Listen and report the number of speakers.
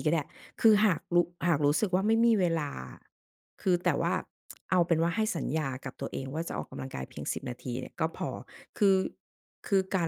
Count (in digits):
1